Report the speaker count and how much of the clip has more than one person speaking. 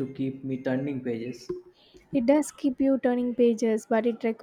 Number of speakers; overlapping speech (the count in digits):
2, no overlap